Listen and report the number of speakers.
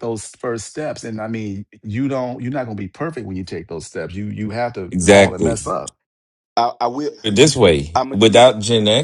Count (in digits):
3